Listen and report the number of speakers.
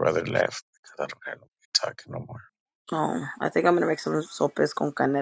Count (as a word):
two